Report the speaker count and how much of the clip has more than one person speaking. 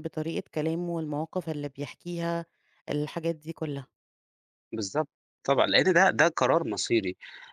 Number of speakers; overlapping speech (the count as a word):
two, no overlap